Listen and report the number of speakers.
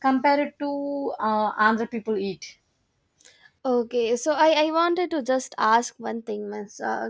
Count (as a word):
two